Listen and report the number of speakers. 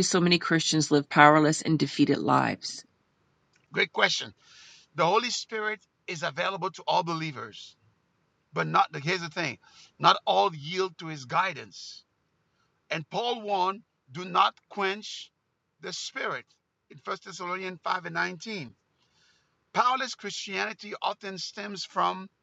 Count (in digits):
2